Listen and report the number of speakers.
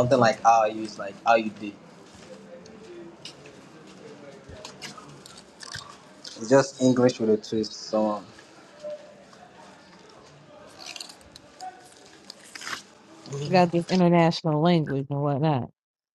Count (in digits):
2